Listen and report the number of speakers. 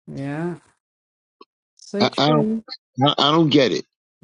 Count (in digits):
2